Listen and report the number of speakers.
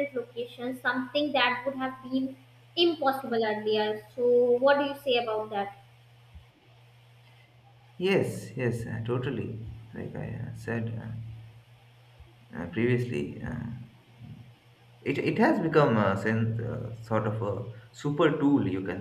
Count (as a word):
two